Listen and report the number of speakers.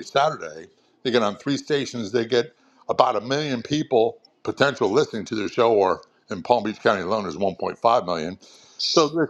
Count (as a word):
one